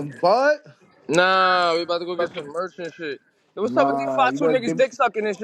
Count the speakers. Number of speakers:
2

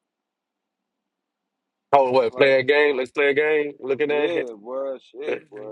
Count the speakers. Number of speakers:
2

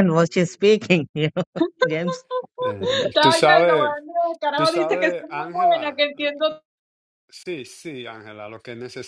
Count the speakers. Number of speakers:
3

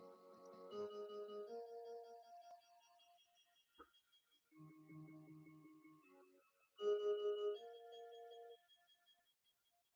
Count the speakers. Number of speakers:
0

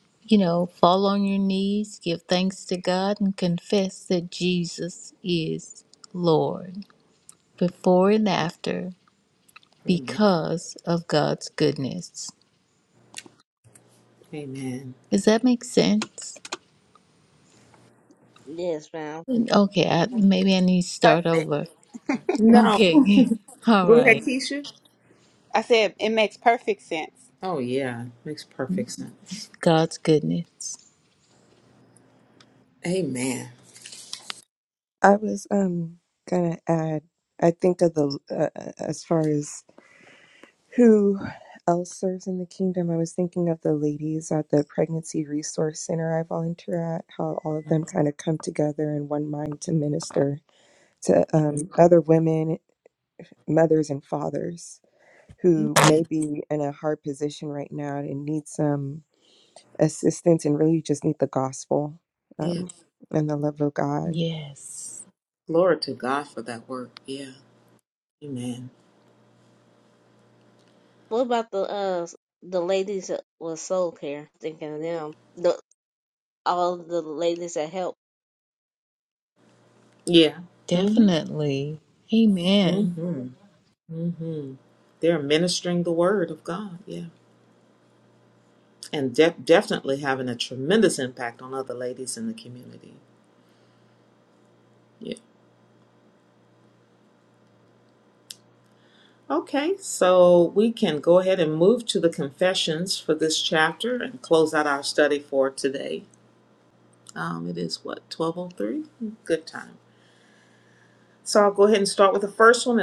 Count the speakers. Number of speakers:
5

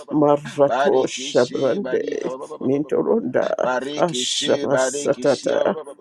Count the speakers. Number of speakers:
2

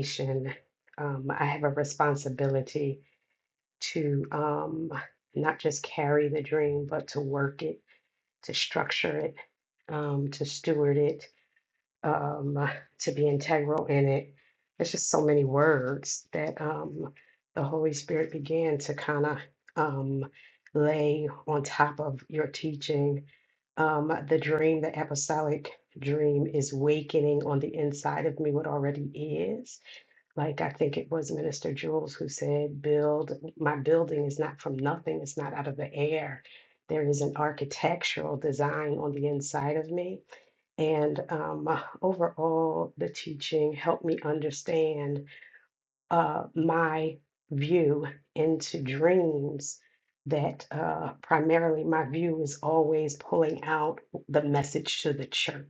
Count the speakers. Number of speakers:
1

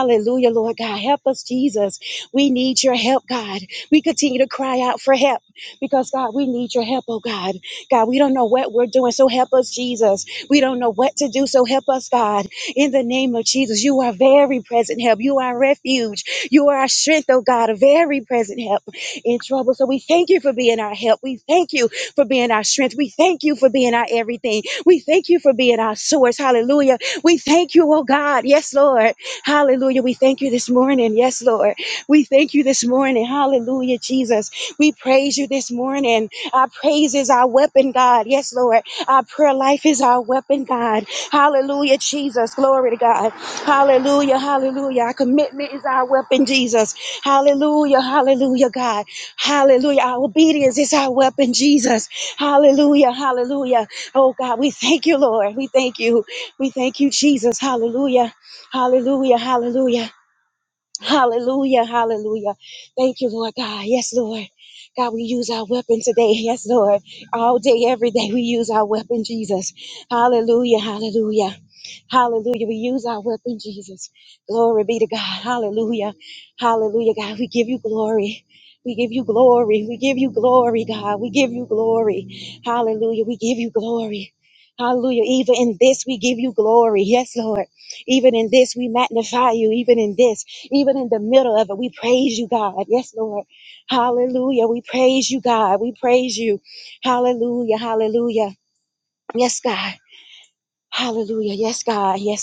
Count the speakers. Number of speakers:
1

